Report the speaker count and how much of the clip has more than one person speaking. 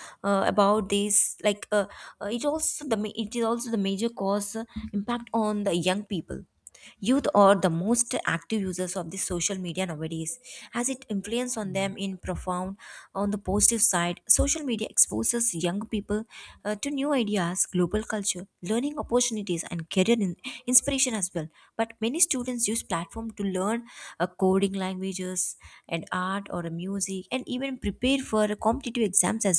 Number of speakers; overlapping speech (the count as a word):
one, no overlap